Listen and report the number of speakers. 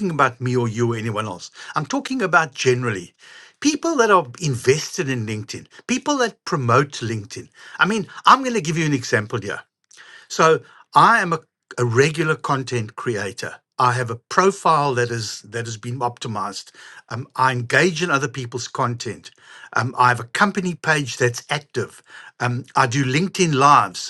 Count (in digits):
1